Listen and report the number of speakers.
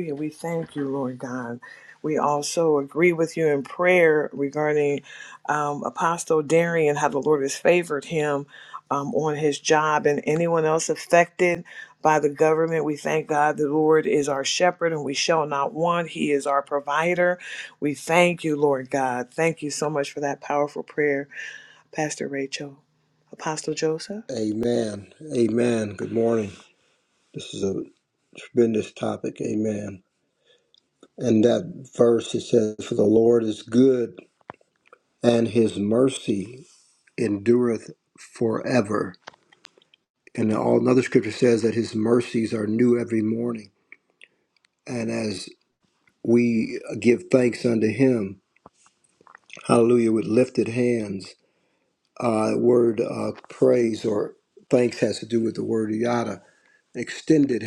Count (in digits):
2